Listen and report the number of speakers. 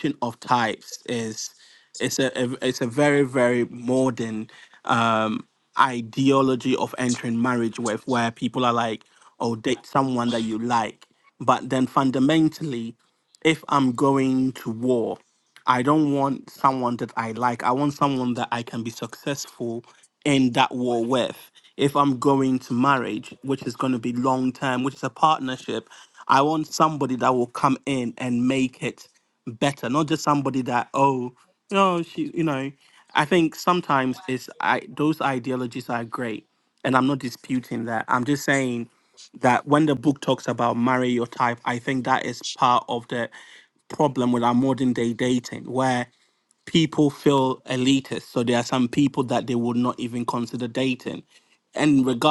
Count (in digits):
1